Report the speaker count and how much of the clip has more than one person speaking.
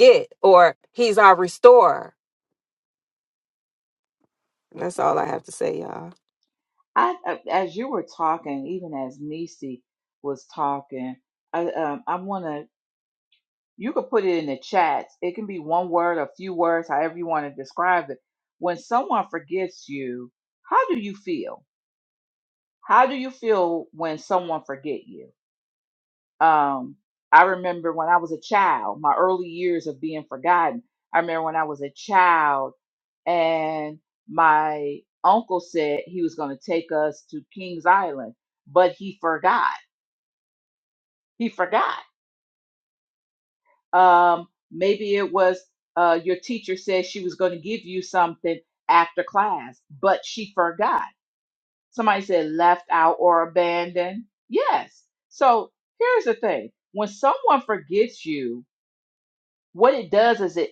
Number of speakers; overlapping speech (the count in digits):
2, no overlap